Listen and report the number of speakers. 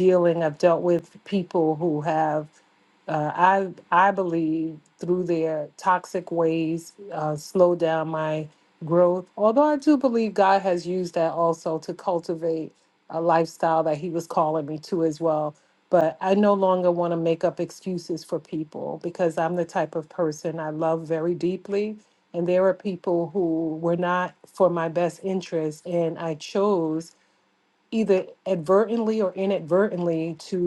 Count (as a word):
one